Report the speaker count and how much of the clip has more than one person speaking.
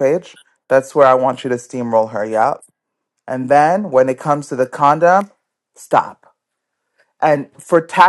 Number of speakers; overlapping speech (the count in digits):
1, no overlap